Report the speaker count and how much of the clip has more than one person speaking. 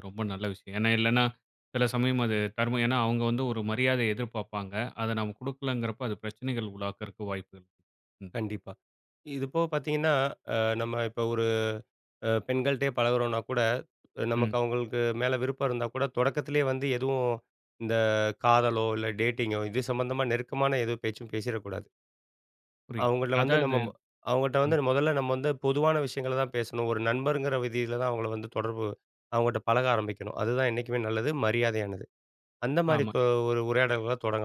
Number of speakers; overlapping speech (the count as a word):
two, about 4%